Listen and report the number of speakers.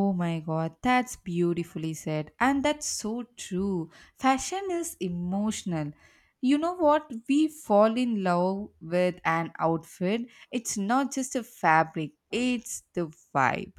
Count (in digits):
1